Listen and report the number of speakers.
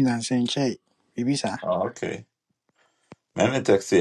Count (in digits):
2